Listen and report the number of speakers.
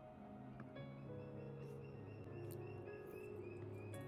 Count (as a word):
zero